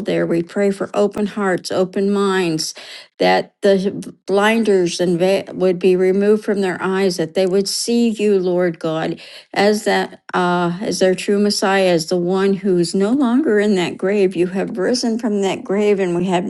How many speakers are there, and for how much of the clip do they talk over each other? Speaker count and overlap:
one, no overlap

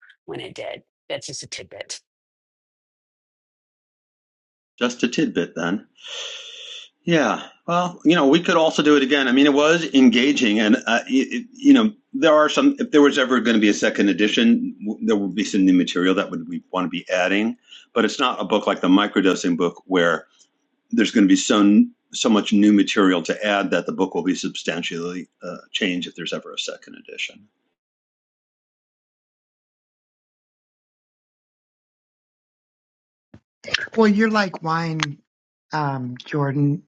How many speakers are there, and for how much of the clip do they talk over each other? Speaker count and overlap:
three, no overlap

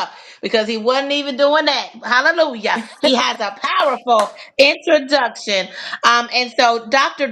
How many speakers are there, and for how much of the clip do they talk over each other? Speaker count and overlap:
one, no overlap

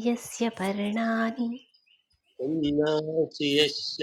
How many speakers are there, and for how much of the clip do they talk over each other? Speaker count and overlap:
two, no overlap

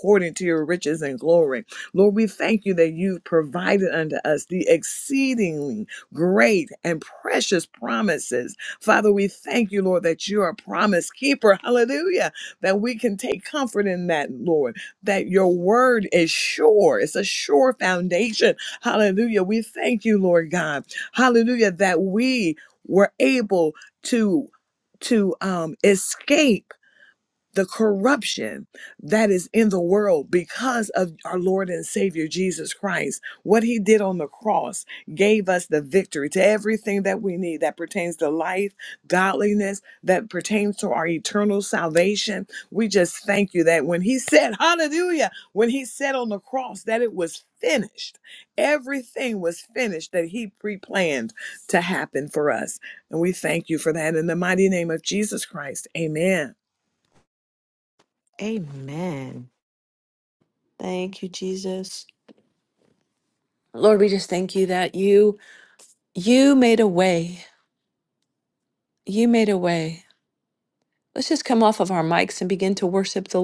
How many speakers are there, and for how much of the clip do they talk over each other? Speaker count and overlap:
three, no overlap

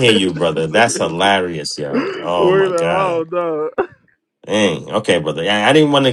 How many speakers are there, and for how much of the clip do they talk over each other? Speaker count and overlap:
two, about 33%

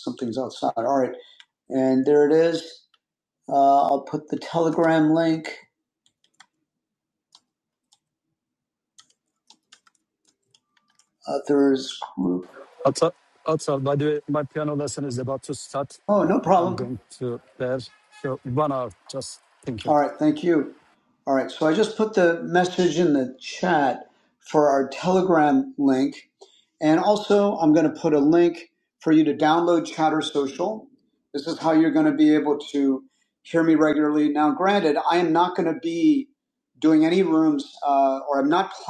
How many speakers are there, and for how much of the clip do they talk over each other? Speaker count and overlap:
two, about 1%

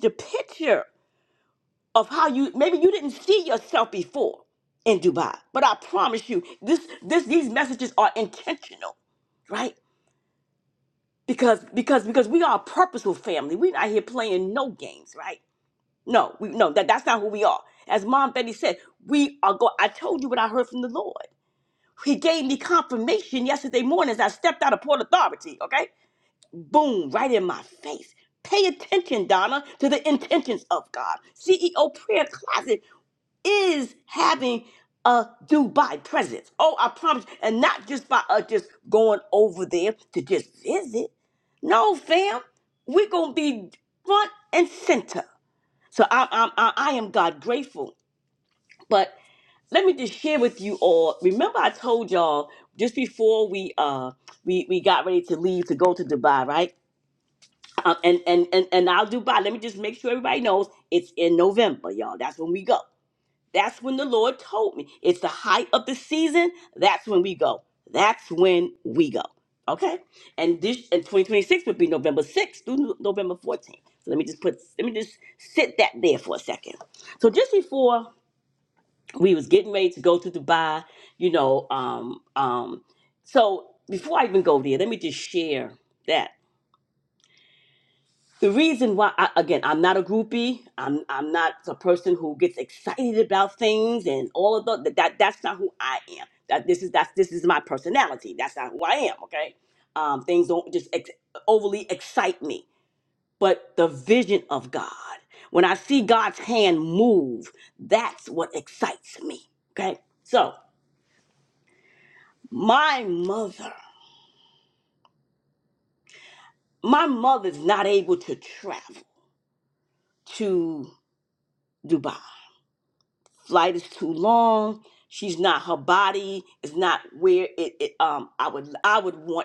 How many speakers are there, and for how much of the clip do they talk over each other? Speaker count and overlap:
one, no overlap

